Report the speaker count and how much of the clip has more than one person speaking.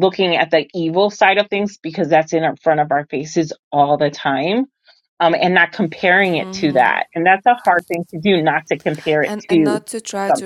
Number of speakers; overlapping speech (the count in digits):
2, about 11%